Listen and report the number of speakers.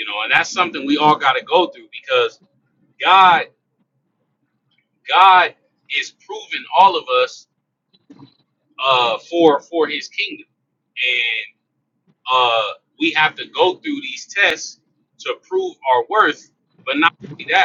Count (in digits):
1